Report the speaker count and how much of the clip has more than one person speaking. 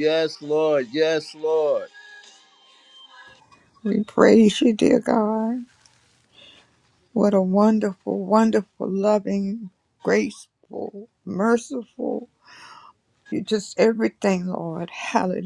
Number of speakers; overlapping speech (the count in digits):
2, no overlap